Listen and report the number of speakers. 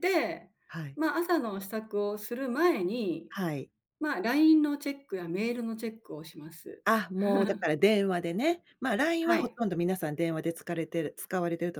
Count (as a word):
two